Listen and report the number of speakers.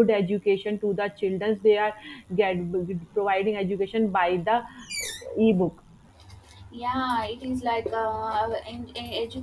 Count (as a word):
two